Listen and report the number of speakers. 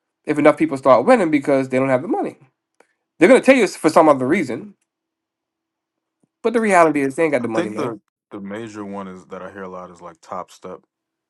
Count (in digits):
2